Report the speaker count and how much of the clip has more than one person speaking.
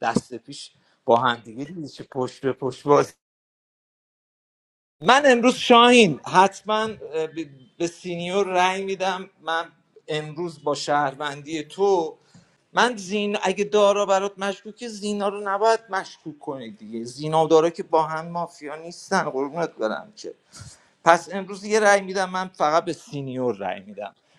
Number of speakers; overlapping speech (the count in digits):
1, no overlap